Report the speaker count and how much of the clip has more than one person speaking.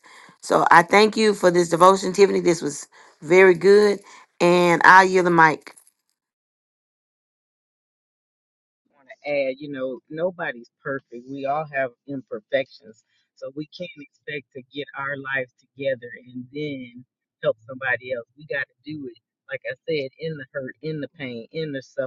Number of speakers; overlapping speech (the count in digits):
2, no overlap